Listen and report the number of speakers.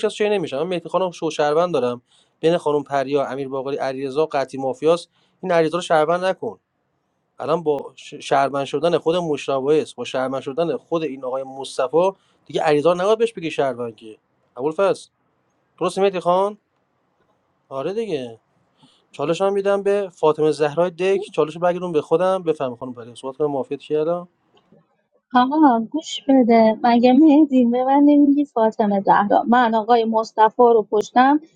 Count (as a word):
two